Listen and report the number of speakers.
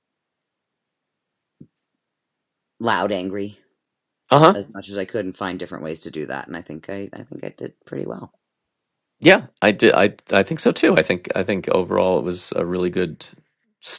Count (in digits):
2